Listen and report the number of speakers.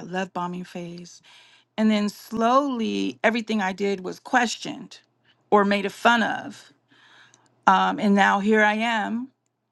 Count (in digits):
1